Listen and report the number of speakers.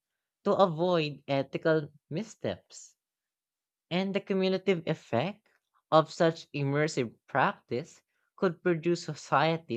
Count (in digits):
1